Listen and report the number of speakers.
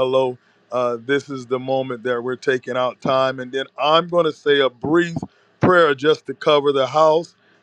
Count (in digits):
1